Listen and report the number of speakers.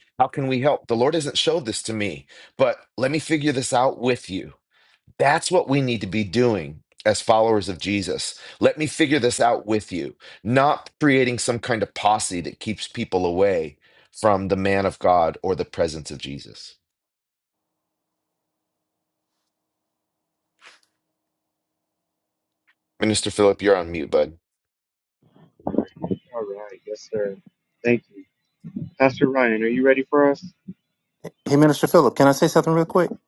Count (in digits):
3